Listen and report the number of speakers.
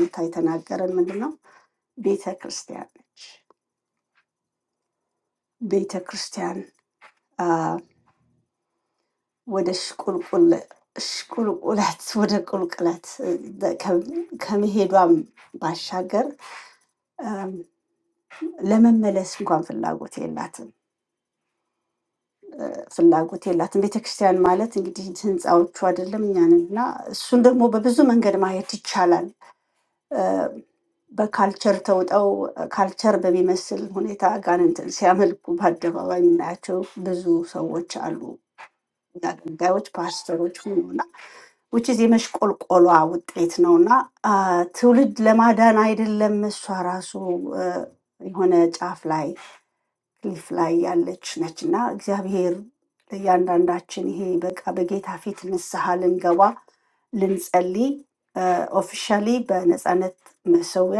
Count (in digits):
1